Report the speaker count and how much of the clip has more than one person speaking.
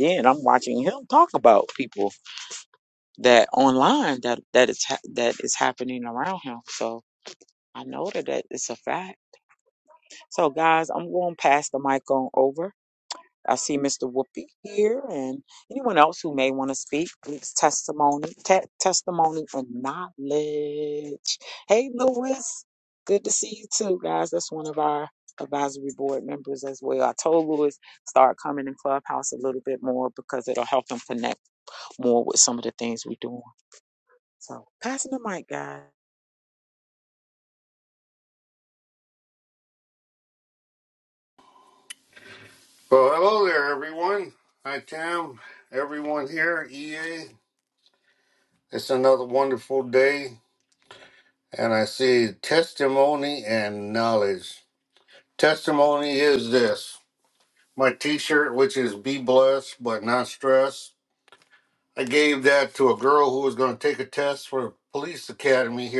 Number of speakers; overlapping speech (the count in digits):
2, no overlap